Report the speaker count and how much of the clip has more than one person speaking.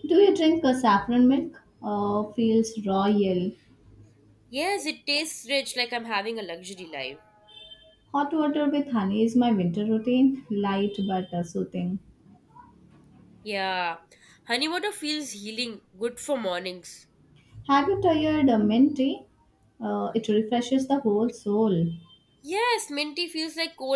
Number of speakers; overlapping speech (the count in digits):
2, no overlap